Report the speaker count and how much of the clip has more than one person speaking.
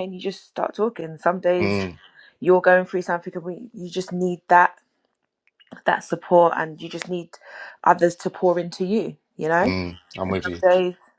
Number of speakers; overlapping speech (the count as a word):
two, about 7%